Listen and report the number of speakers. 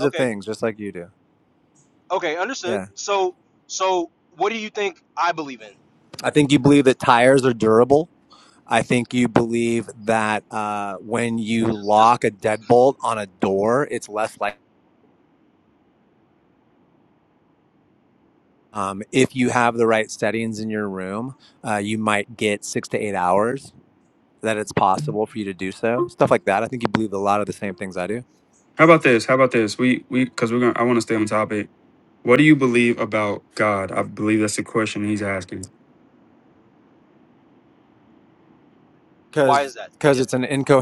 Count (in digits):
3